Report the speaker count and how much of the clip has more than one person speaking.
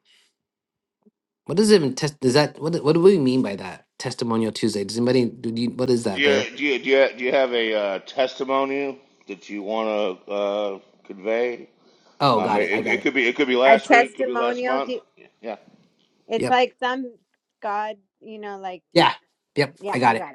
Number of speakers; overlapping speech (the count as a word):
three, about 14%